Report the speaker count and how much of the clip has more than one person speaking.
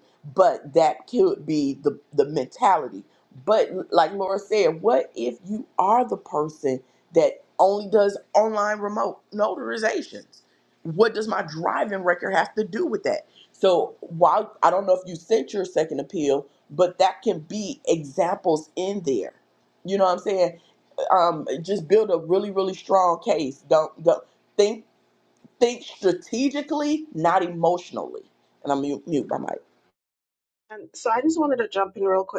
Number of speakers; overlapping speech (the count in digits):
2, no overlap